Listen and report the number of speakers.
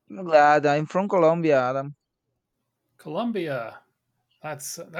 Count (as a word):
two